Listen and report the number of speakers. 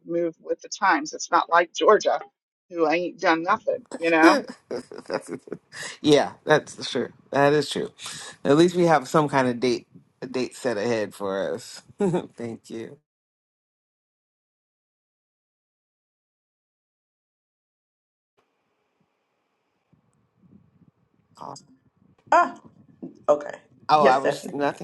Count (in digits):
3